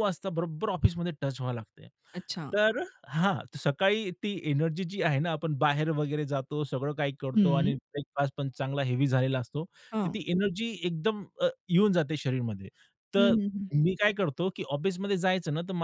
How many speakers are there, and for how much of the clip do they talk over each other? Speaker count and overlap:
2, about 6%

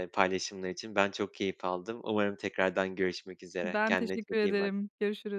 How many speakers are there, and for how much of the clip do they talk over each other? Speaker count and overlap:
2, about 20%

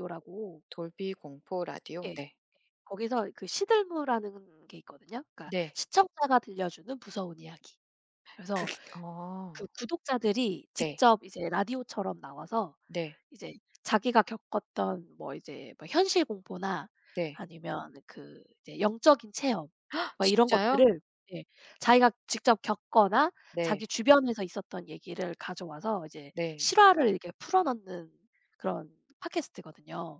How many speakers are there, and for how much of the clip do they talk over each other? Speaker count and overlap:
2, about 6%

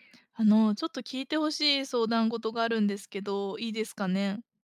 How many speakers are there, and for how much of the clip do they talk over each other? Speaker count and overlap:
1, no overlap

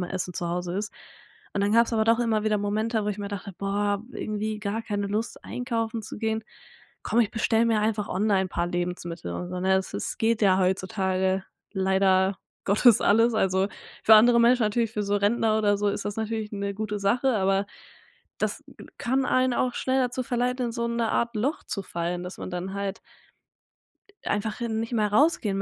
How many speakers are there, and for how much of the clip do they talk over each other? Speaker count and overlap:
1, no overlap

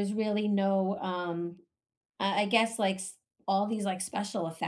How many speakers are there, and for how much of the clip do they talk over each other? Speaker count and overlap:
1, no overlap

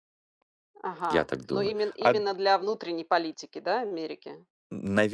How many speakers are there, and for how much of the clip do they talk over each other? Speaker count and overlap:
2, about 21%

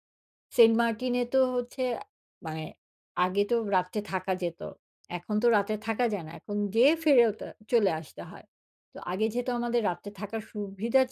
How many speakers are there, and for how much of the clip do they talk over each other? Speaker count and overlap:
1, no overlap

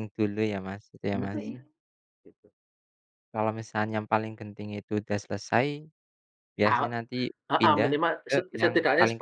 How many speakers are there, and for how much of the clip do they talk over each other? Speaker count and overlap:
2, about 20%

